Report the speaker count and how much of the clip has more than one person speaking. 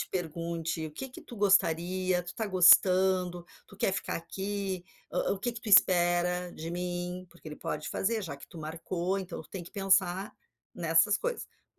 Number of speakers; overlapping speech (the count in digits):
1, no overlap